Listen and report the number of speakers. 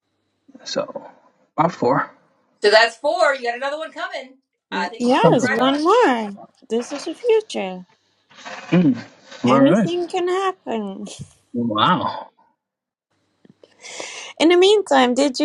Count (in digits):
3